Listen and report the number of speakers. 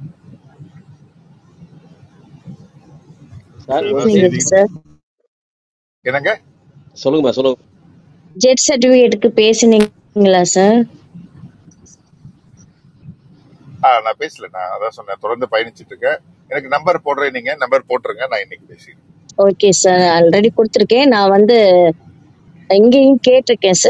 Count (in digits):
3